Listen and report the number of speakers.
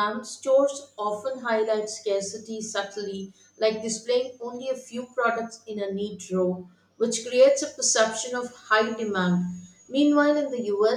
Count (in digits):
1